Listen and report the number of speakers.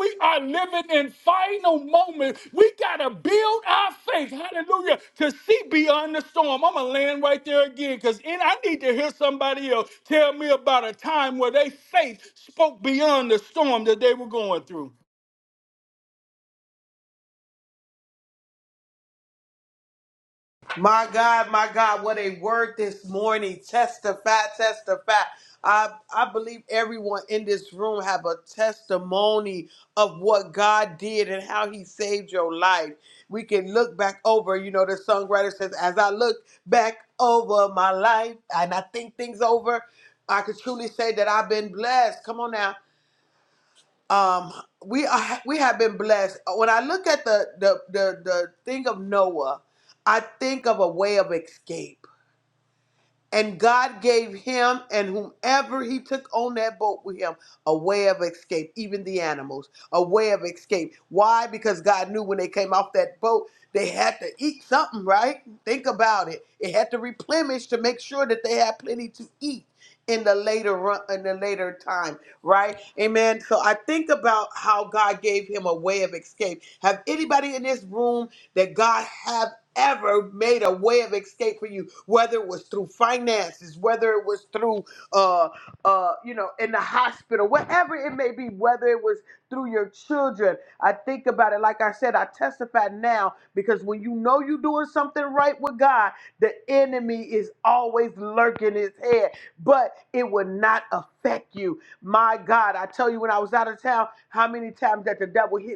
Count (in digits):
2